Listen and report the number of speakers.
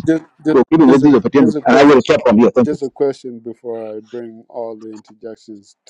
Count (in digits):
2